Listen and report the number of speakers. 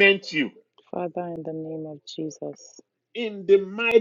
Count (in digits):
2